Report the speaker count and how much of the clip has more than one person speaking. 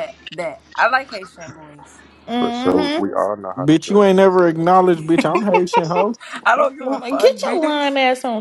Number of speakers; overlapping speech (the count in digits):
4, about 33%